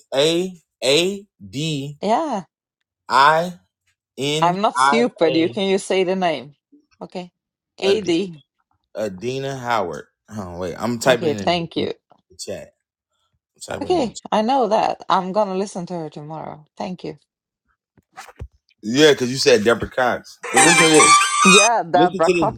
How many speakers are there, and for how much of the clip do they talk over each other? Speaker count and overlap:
two, about 15%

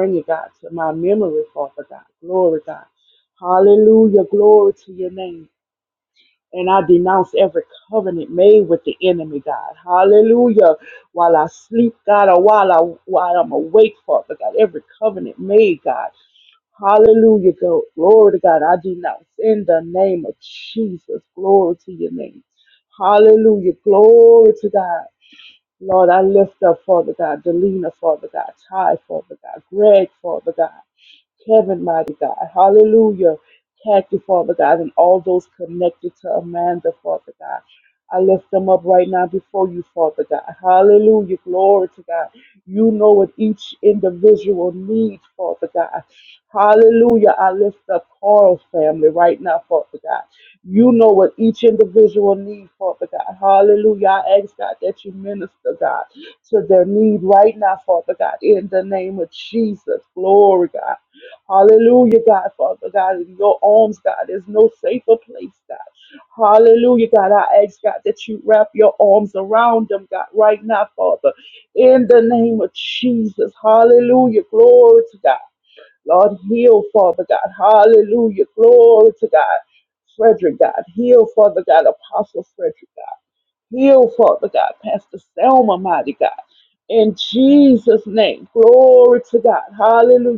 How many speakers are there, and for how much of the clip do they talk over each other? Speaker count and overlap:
one, no overlap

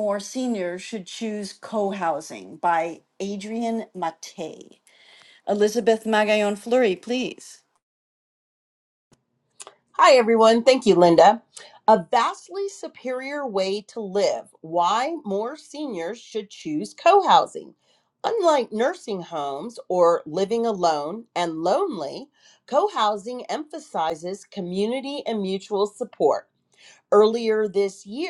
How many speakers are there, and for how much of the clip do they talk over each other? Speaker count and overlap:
two, no overlap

